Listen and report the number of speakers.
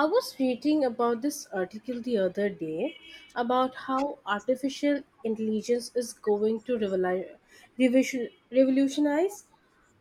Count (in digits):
1